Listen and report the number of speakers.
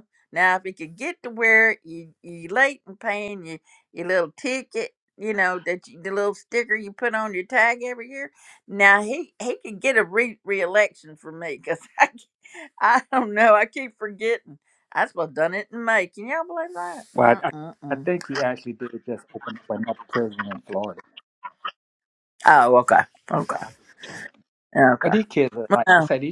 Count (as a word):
two